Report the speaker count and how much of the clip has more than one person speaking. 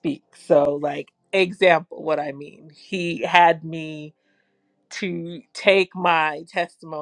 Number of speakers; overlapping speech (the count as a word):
one, no overlap